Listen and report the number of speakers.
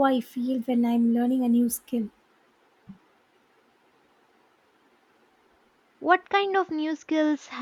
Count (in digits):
2